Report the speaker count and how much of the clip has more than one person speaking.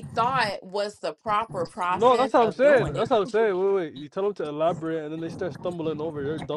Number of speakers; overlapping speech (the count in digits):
2, about 17%